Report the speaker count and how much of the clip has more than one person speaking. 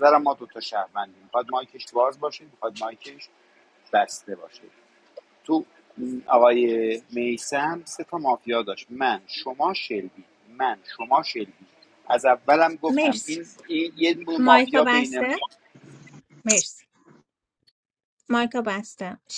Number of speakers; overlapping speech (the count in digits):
2, about 7%